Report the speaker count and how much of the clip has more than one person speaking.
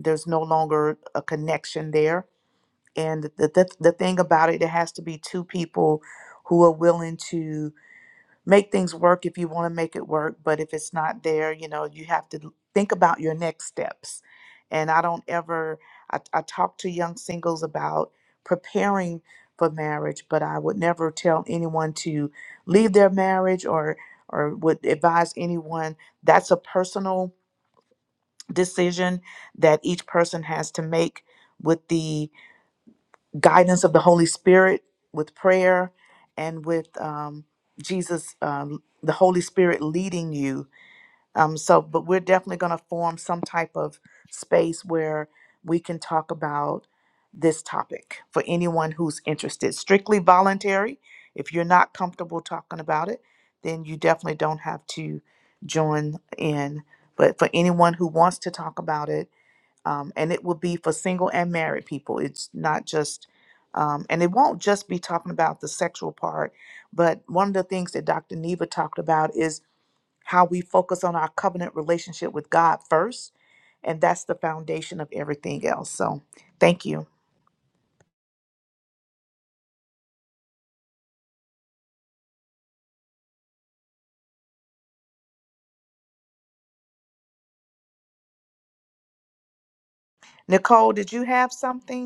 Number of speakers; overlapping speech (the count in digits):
1, no overlap